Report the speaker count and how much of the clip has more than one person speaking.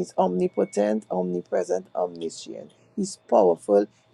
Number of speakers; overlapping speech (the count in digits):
1, no overlap